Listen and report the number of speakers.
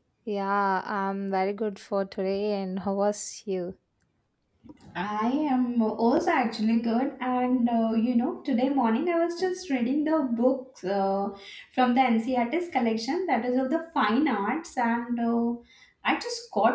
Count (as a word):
two